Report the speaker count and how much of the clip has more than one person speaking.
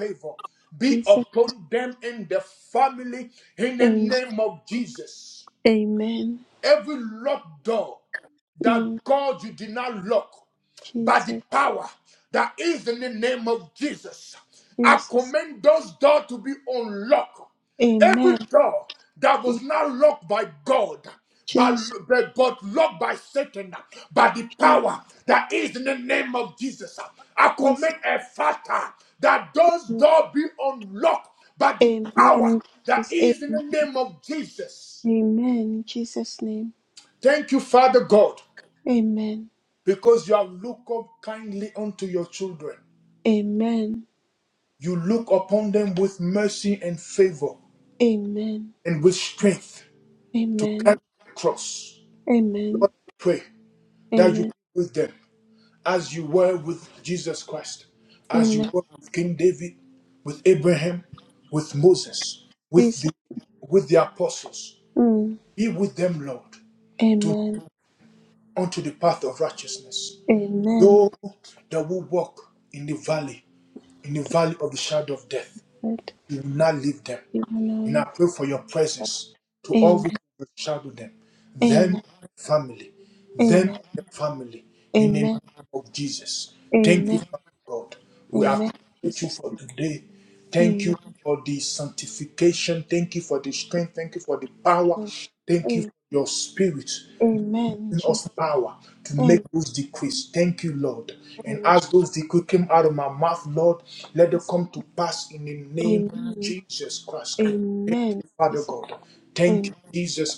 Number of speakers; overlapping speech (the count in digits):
2, about 11%